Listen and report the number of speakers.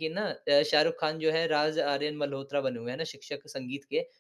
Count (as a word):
one